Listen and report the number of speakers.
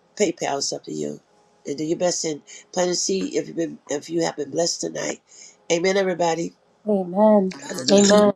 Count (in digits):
2